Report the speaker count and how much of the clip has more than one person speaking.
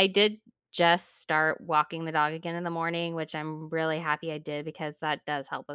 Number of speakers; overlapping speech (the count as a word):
one, no overlap